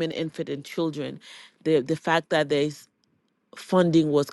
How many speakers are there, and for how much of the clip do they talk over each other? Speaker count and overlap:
1, no overlap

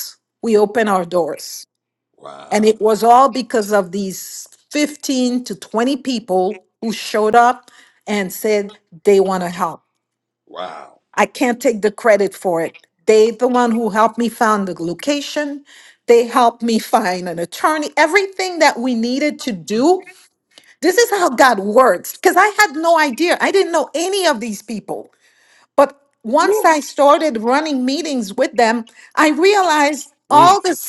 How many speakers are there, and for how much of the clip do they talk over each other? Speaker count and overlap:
2, about 1%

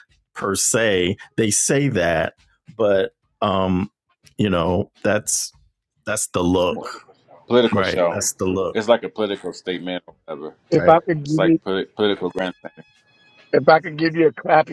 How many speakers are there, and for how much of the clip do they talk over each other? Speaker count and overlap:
3, about 10%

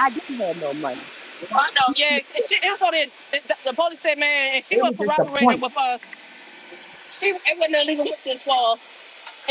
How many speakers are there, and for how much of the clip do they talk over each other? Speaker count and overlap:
2, about 11%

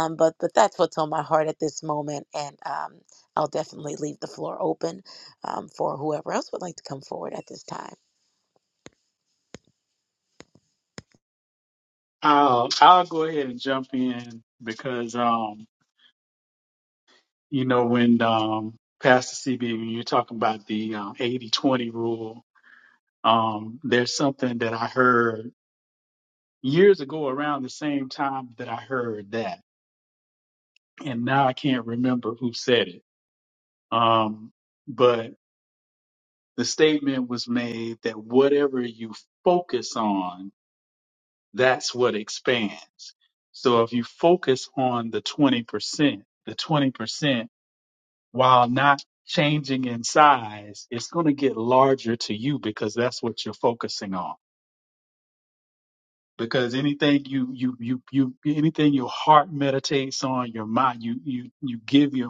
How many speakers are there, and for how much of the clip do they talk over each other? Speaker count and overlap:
2, no overlap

